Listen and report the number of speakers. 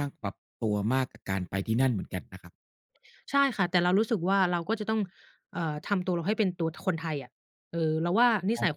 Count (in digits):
2